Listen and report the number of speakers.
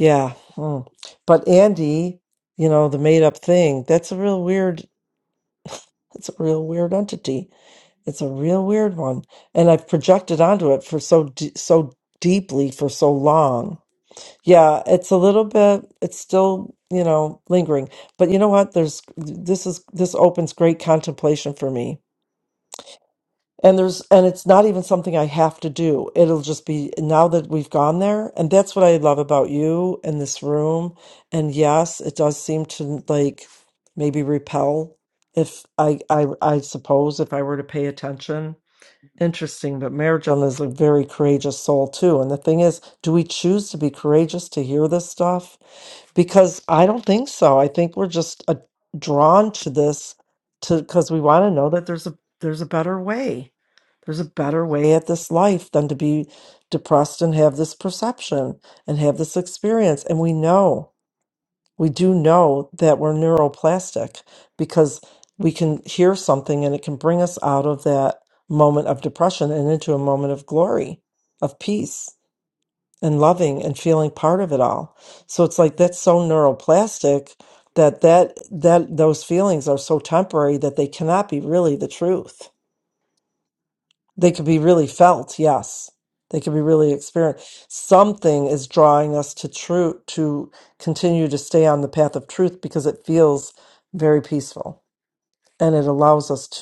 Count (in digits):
1